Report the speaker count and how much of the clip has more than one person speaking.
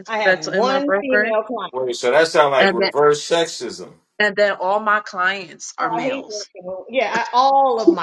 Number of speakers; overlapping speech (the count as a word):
three, about 26%